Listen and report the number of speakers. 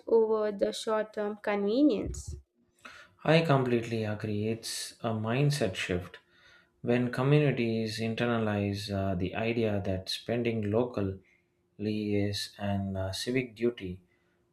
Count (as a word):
two